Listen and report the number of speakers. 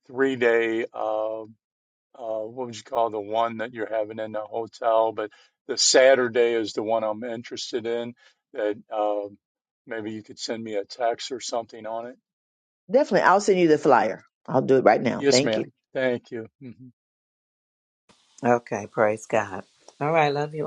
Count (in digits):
3